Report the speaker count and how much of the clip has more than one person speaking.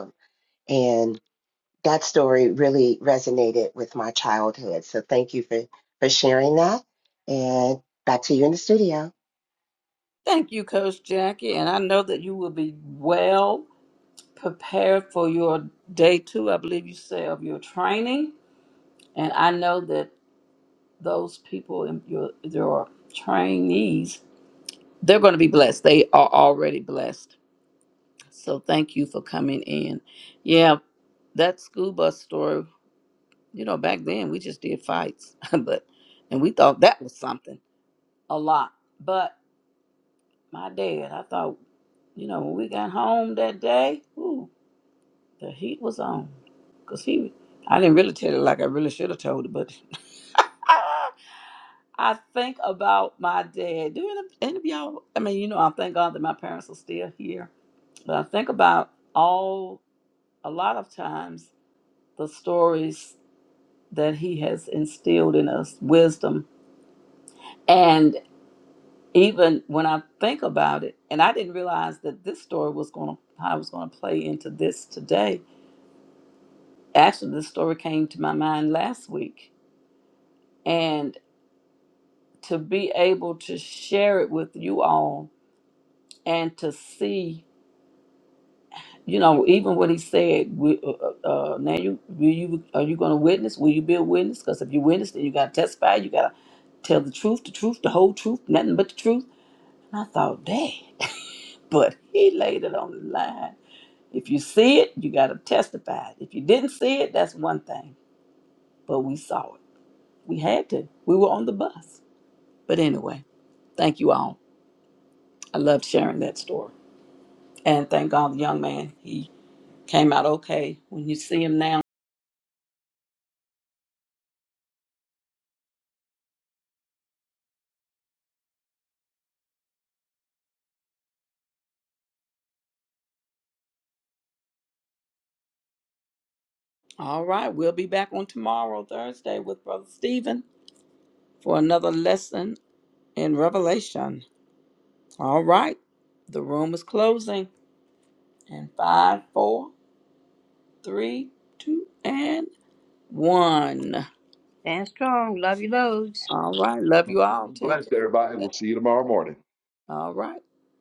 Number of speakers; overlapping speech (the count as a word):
four, under 1%